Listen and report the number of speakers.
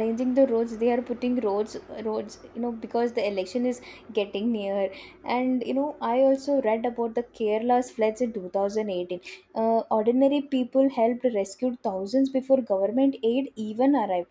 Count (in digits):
1